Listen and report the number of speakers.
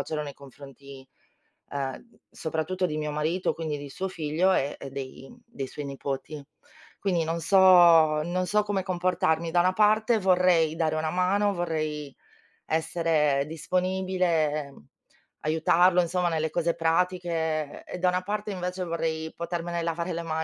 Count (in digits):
1